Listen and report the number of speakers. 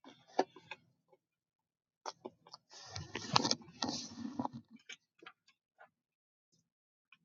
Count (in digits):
0